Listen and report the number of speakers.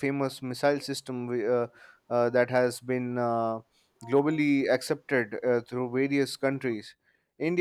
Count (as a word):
one